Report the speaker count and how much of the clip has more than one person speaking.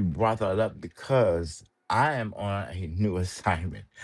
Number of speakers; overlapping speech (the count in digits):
1, no overlap